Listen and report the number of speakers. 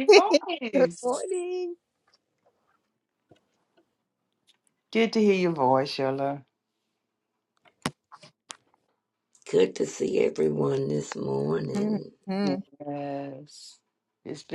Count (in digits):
3